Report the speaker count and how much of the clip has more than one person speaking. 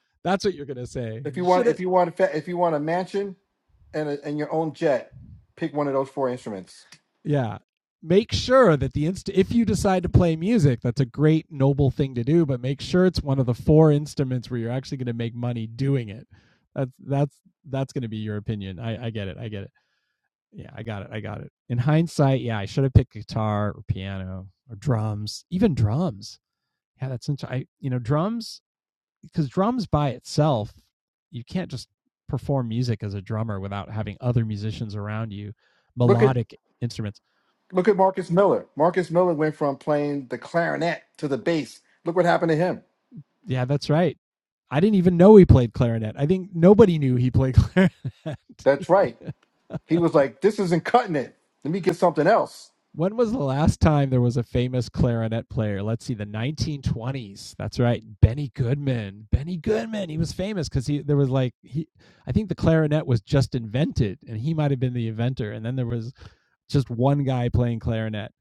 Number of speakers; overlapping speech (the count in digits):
2, about 1%